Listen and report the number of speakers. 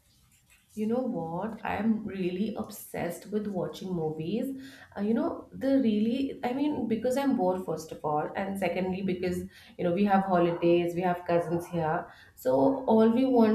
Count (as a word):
one